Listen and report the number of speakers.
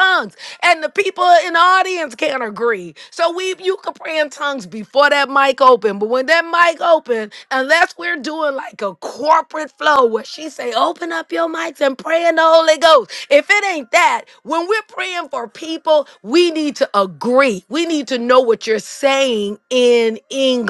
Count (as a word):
one